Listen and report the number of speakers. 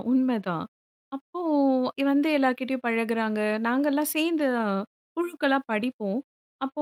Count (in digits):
1